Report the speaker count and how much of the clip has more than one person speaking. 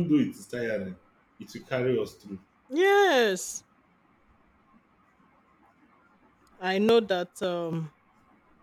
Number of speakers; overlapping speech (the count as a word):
two, no overlap